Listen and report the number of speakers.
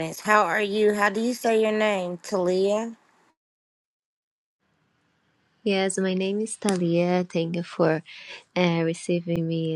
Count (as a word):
two